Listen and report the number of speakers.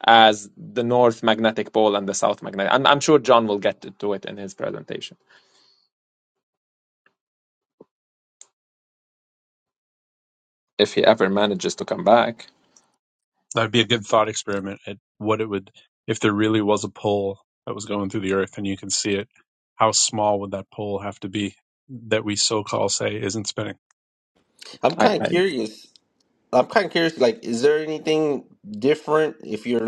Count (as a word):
three